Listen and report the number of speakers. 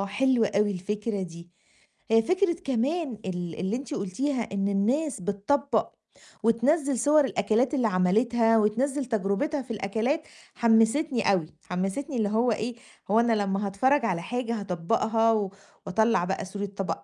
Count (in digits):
1